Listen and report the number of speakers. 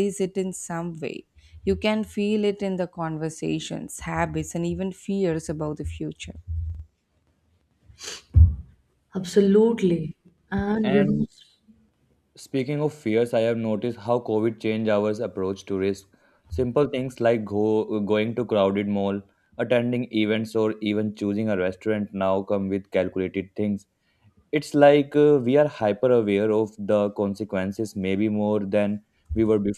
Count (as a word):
three